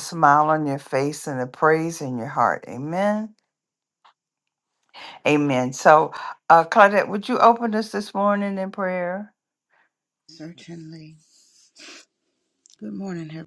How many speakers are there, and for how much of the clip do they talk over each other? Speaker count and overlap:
2, no overlap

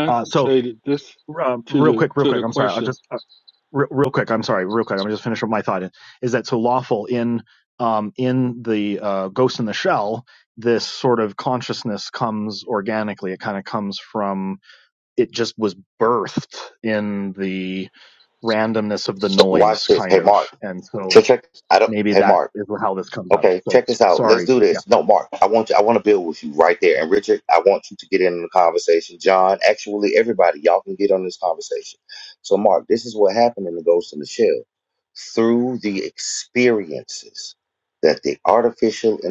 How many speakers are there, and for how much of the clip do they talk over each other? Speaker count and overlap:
3, about 12%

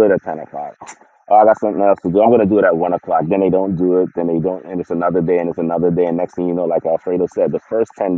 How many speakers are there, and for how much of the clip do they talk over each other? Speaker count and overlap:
1, no overlap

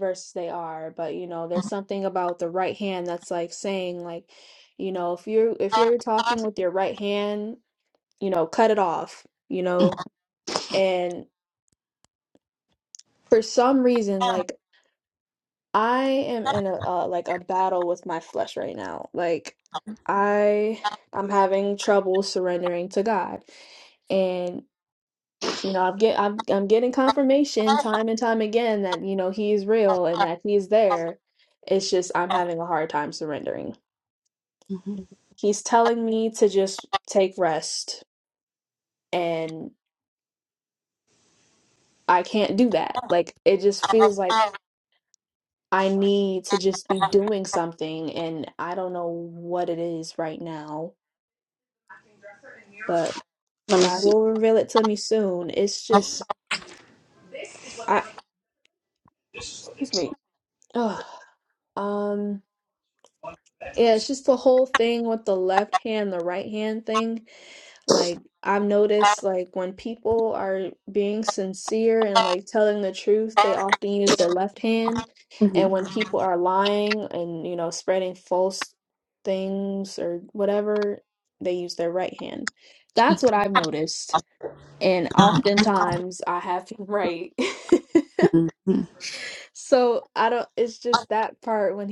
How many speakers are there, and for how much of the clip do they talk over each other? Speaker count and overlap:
2, about 1%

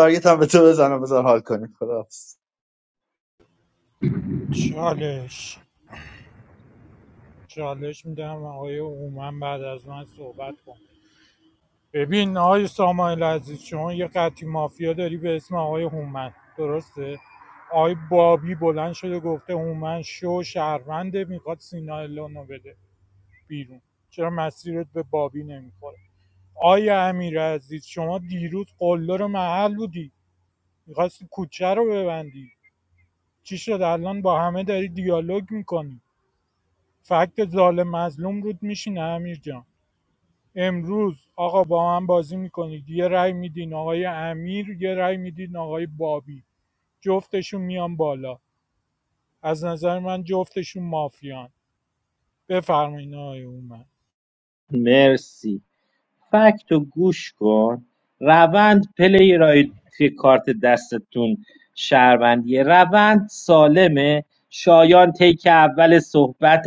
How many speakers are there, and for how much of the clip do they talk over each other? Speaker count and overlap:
3, no overlap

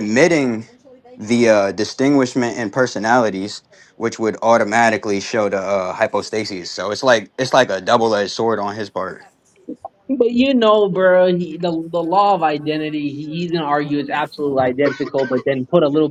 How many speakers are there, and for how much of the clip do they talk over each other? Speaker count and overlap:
2, no overlap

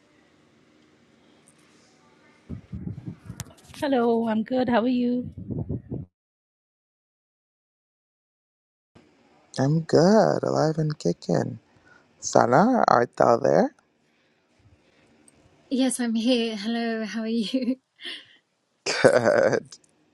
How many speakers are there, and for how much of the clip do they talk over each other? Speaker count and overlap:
3, no overlap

